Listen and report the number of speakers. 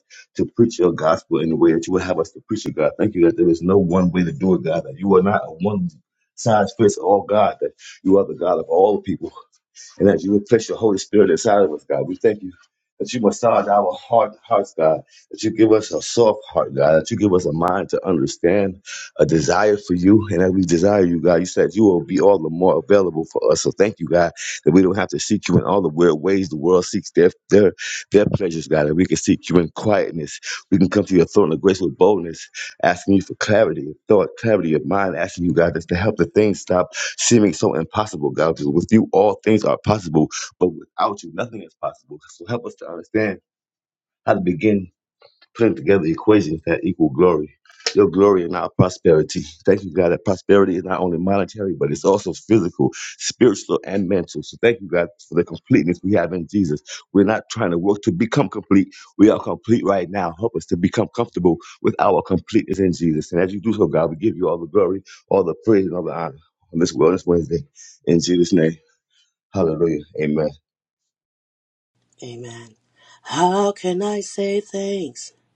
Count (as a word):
two